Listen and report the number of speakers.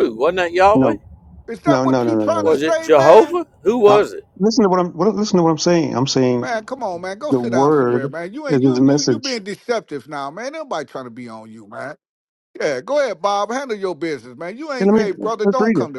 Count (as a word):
three